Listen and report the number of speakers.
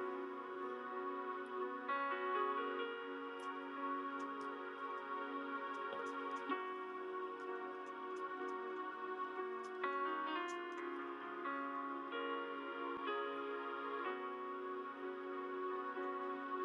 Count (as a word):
zero